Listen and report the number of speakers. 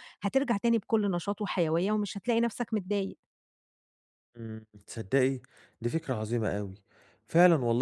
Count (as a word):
two